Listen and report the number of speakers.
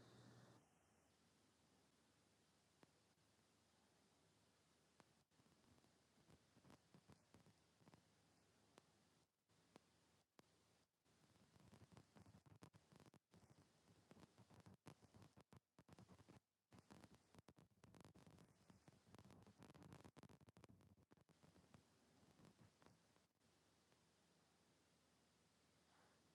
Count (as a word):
zero